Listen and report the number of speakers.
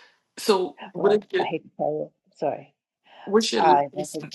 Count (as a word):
two